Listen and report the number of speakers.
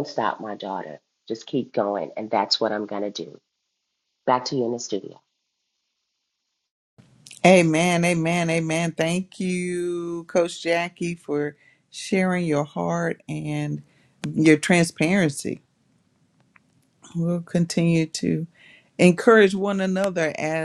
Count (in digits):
2